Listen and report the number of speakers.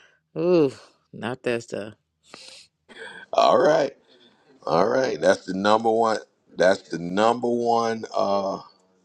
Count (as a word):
two